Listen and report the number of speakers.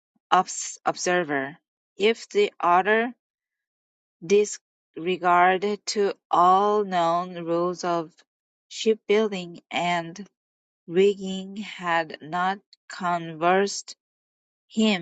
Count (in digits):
1